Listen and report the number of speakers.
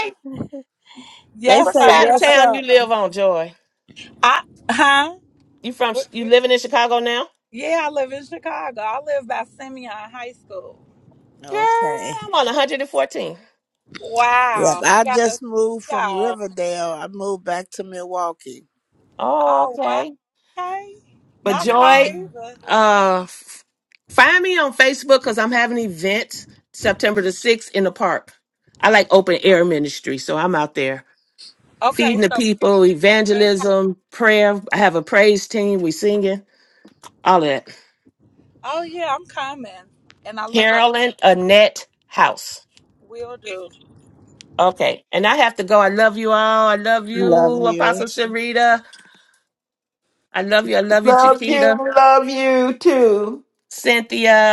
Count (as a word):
four